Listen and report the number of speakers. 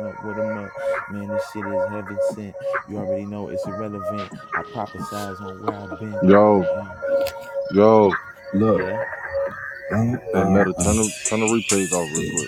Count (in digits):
3